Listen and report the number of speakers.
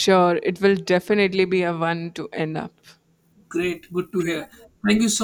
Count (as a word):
two